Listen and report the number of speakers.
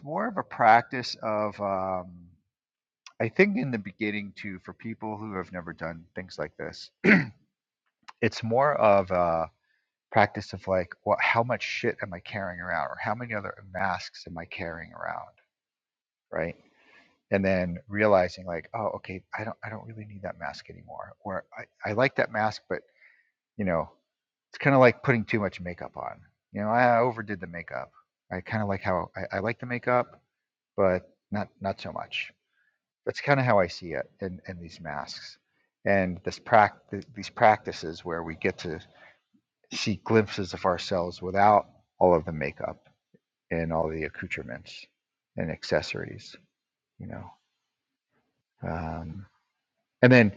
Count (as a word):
one